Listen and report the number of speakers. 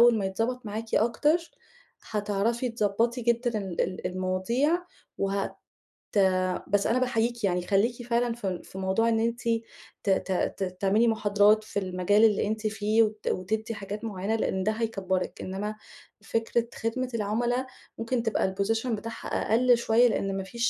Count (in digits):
1